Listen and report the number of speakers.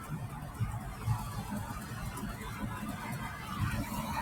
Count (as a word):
zero